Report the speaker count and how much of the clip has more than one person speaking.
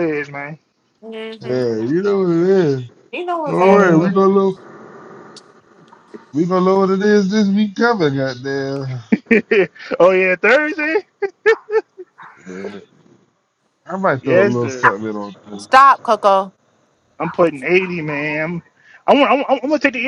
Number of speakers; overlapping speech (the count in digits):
3, about 8%